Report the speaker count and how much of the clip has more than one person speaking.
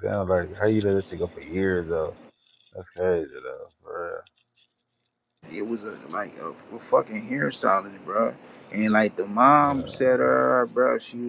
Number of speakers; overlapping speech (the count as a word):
two, about 3%